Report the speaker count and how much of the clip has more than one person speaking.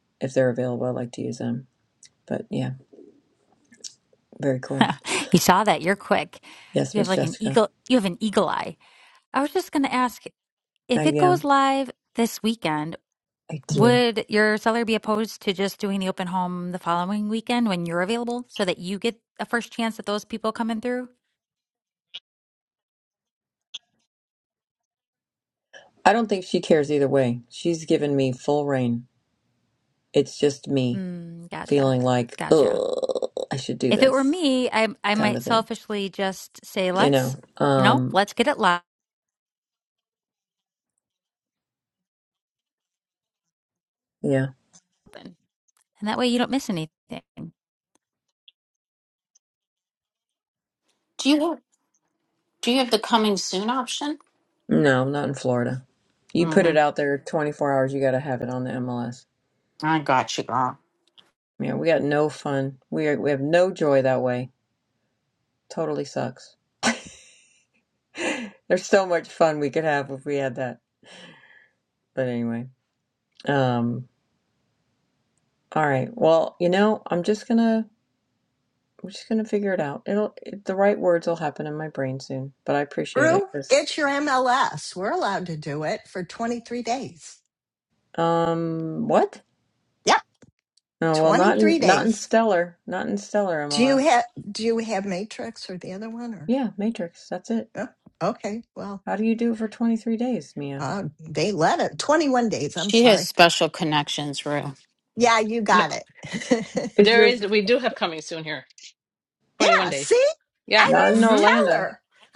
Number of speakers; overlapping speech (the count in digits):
5, about 8%